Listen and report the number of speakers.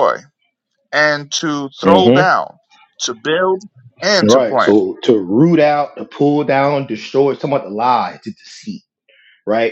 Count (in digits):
2